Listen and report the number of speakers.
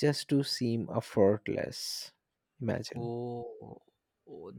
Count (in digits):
2